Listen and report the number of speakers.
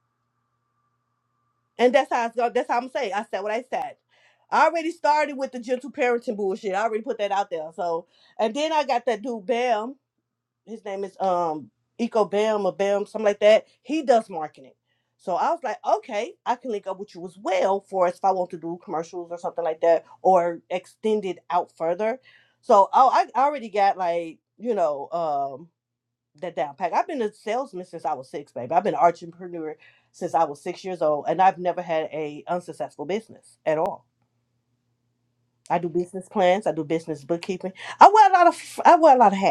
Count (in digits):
1